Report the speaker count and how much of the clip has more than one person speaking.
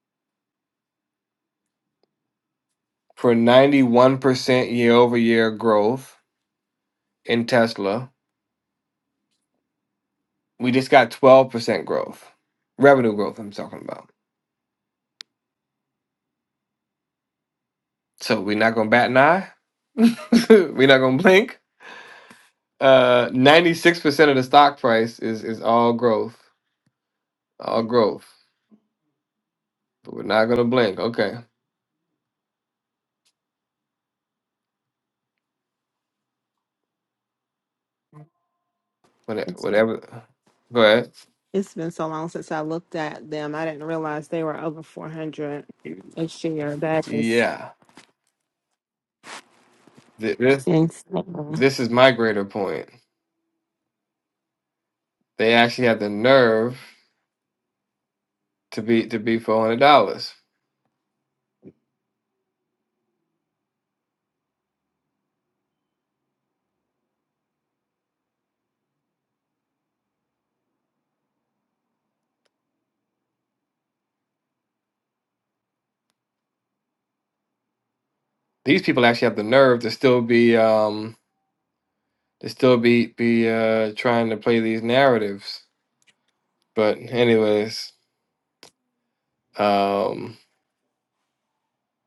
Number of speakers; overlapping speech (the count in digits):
2, under 1%